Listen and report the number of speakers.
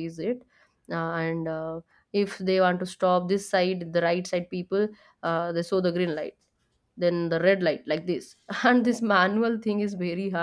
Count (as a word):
one